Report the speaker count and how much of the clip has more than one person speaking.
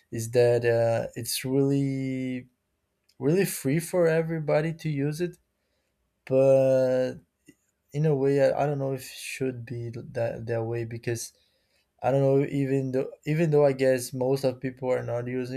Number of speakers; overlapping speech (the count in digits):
1, no overlap